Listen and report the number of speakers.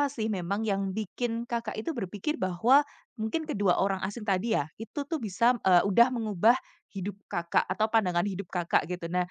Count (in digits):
1